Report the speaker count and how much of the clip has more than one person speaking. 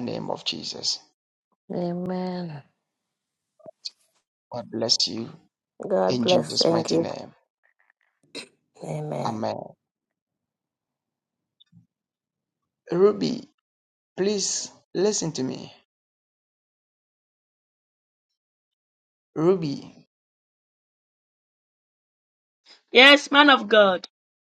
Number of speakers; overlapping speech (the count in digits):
3, about 5%